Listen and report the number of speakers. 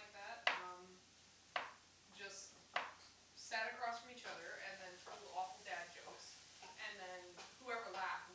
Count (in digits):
1